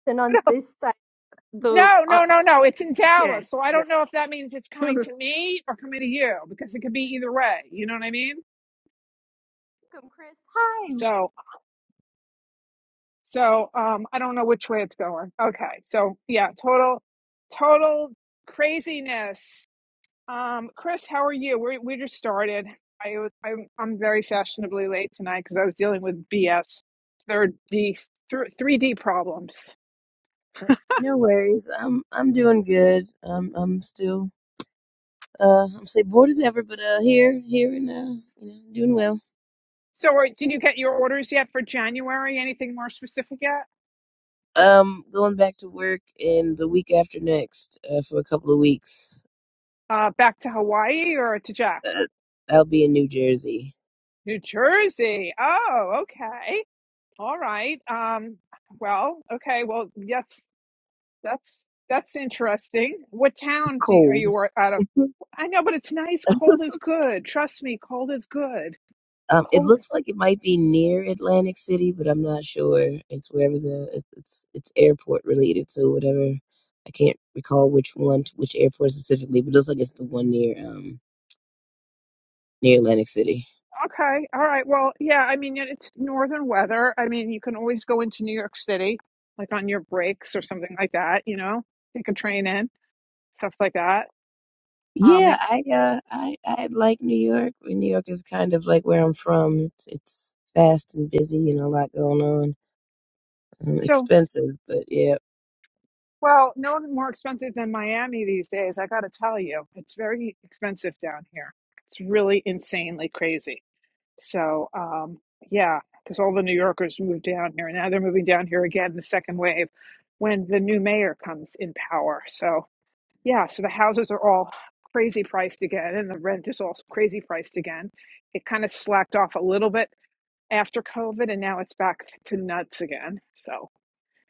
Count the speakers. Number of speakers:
three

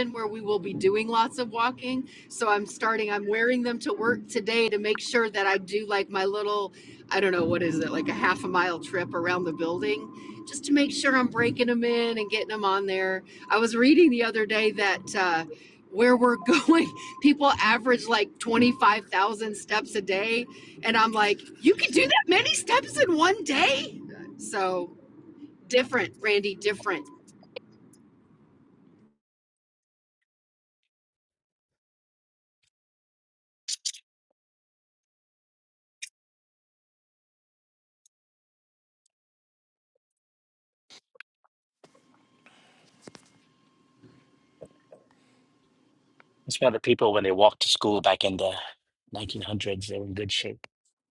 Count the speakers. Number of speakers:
two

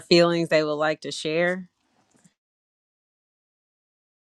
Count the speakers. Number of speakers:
one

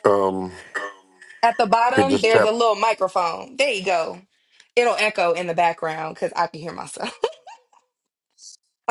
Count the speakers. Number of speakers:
two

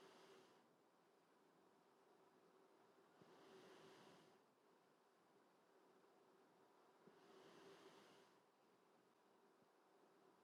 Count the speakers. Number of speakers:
zero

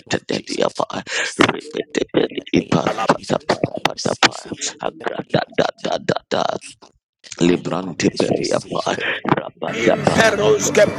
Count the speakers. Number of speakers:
three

